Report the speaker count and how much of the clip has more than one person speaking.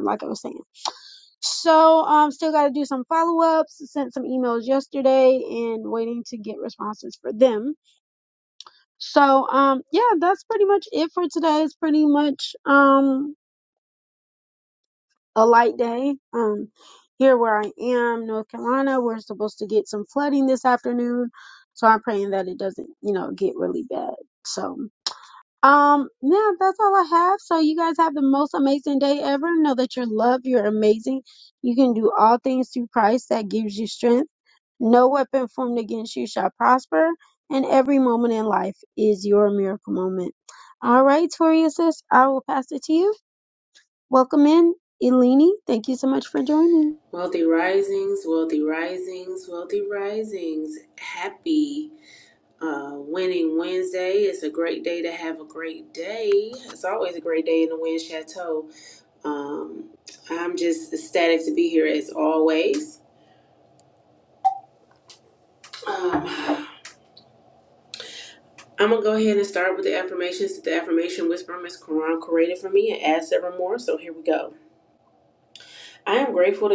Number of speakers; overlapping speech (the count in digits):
2, no overlap